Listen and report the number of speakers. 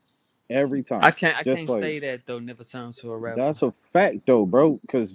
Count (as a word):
two